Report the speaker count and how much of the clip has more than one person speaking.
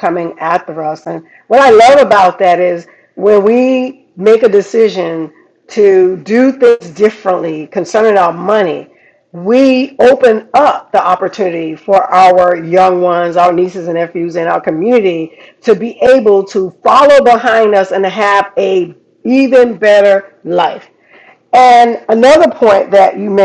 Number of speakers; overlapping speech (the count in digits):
1, no overlap